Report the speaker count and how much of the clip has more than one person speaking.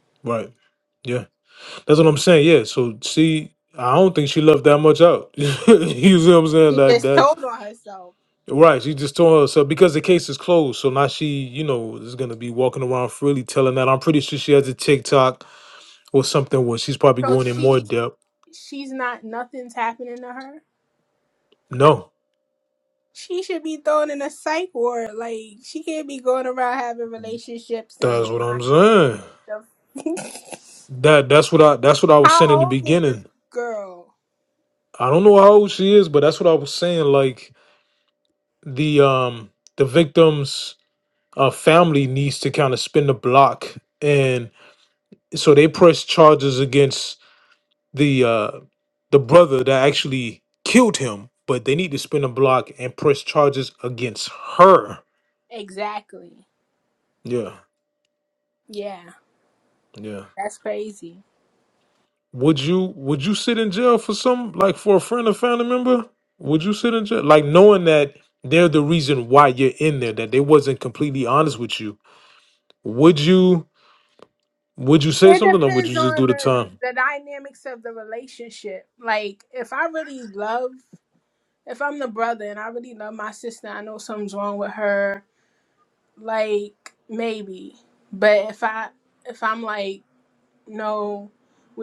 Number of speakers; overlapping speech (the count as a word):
two, about 4%